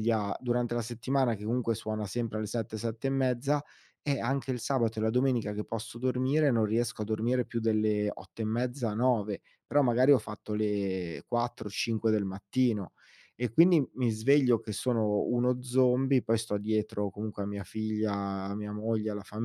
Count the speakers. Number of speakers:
one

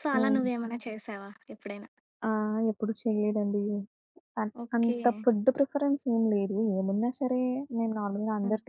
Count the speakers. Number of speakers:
two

